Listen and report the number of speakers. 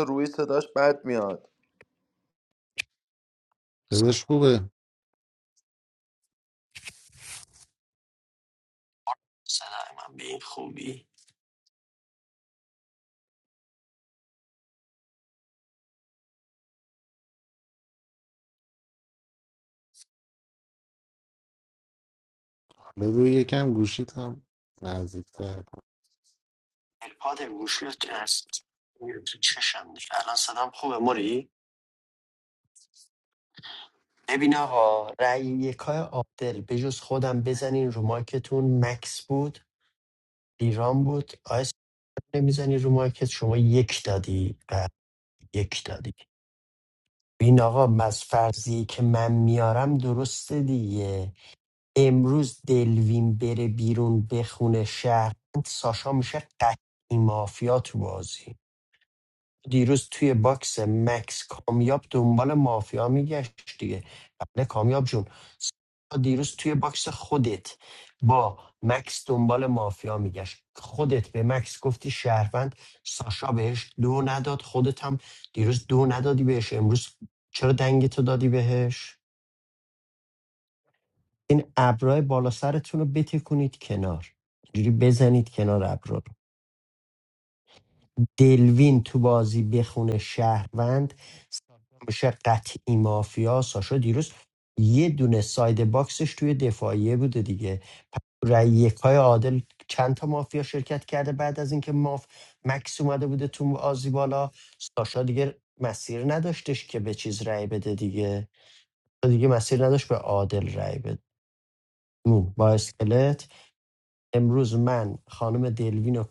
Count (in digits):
3